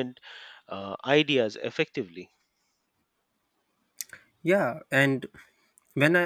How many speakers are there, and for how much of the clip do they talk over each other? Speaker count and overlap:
two, no overlap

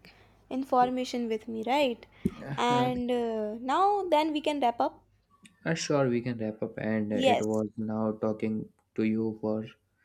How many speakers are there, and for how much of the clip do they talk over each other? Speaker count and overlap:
two, about 6%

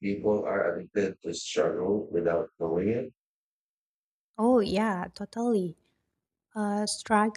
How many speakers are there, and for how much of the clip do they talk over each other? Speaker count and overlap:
two, no overlap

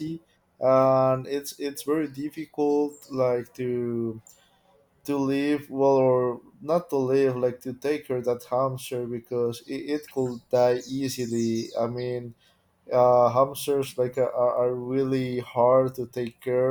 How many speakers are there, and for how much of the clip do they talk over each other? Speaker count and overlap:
one, no overlap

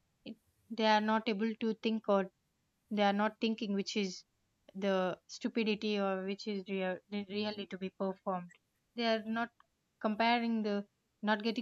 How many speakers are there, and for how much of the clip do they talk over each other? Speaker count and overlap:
one, no overlap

